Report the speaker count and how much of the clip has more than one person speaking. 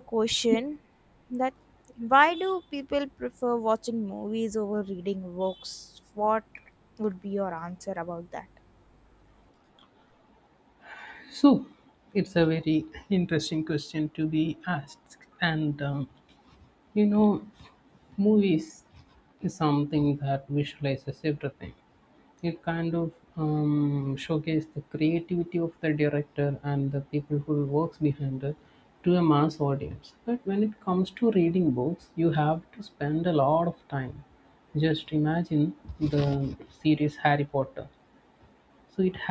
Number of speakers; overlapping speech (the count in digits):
2, no overlap